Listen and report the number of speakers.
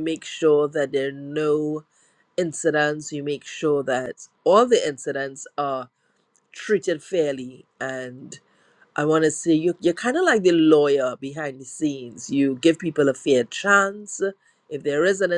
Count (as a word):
one